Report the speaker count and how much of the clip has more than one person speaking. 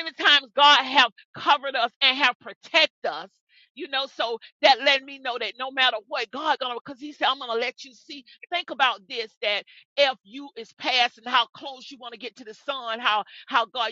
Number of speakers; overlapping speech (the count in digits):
1, no overlap